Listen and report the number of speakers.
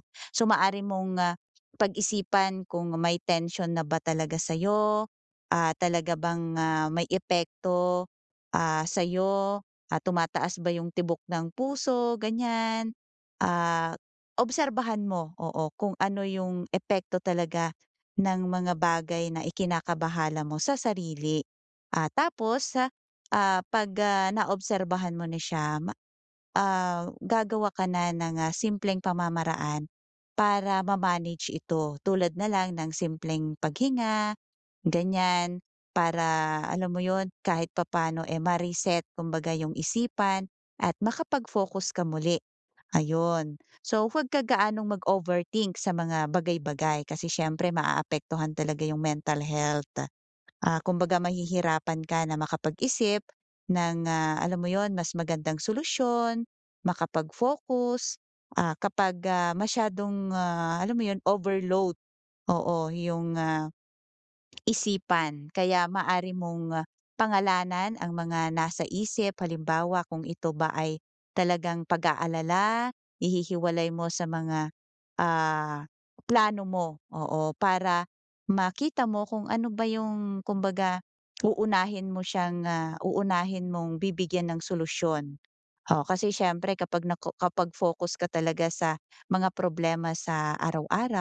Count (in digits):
1